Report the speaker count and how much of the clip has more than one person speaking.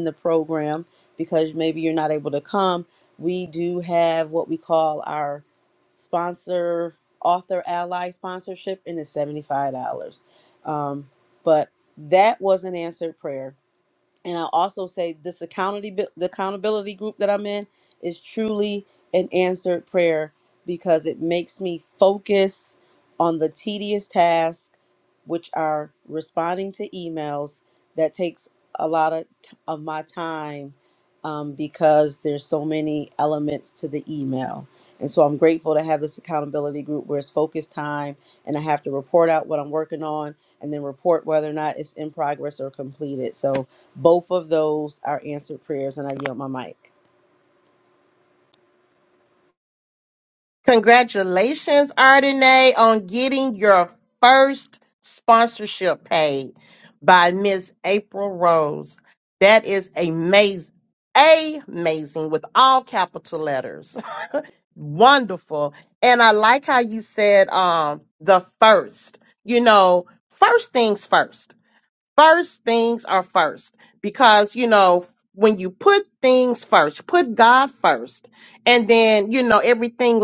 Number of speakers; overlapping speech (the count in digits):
2, no overlap